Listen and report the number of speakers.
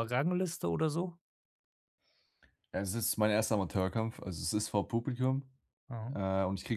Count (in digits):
2